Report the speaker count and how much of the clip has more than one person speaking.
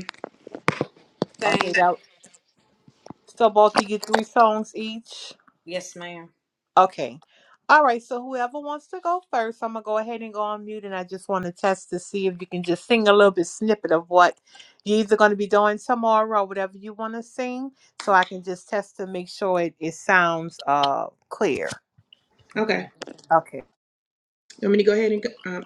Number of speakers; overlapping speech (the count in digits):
3, about 2%